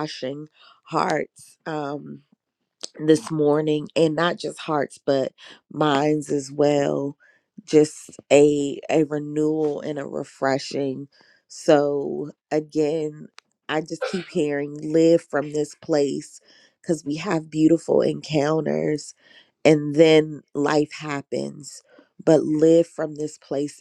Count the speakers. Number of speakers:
1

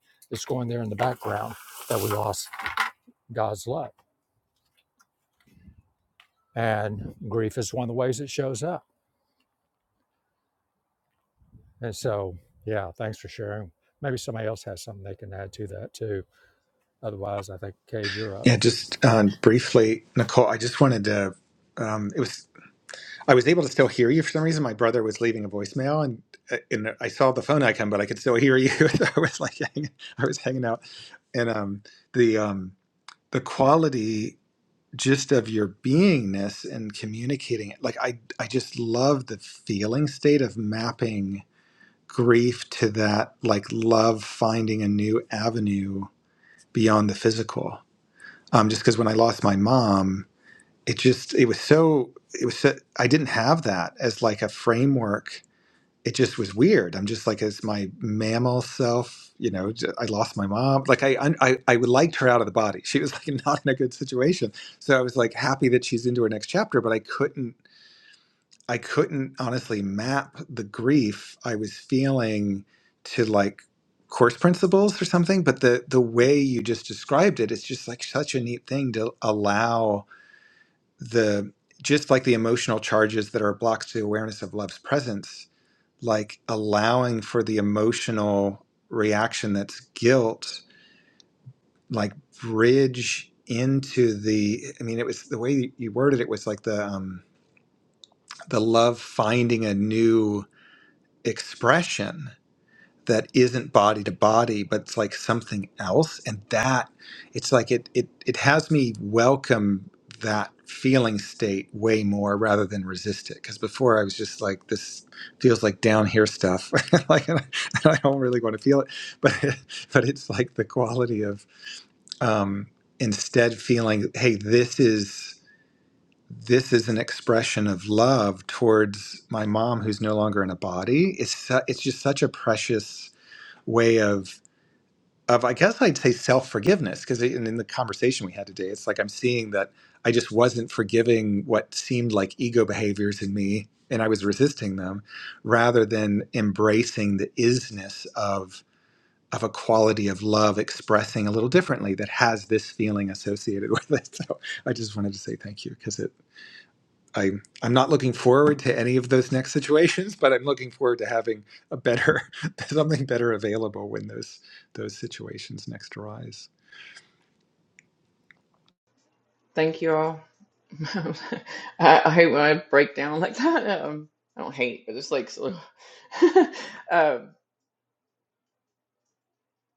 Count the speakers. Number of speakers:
3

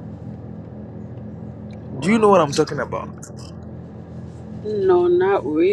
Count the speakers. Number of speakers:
2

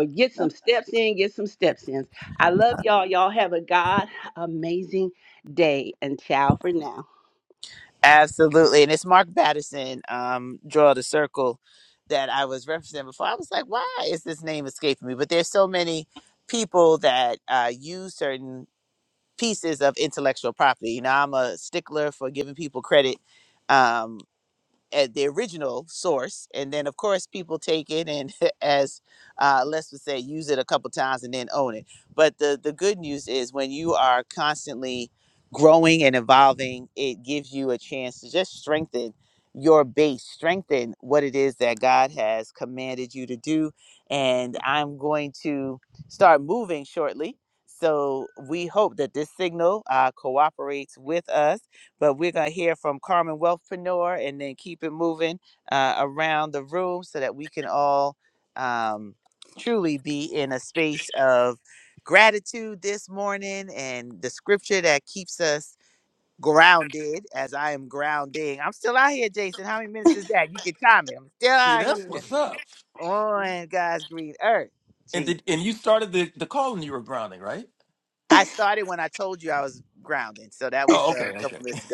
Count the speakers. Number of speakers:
3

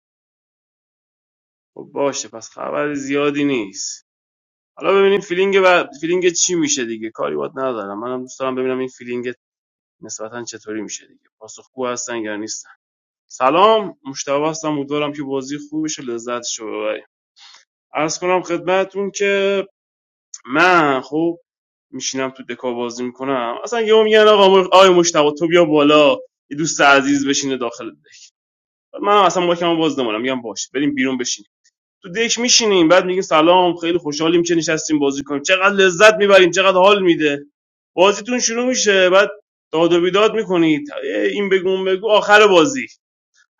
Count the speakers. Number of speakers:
1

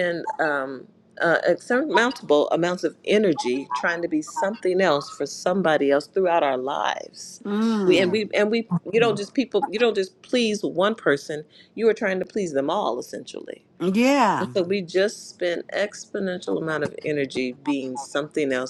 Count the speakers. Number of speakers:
2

